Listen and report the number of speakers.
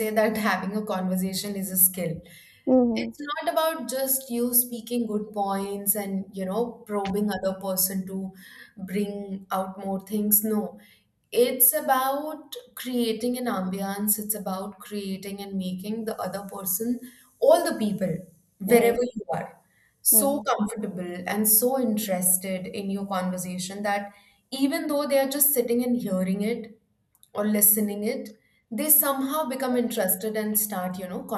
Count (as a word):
two